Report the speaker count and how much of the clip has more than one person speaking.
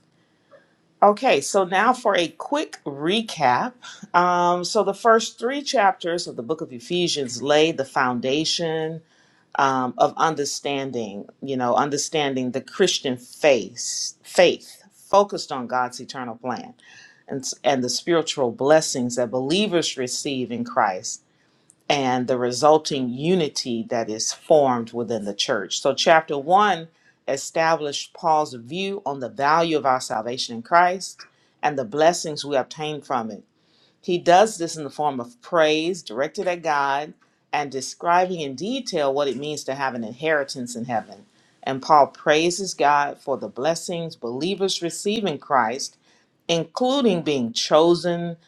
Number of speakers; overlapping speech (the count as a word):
one, no overlap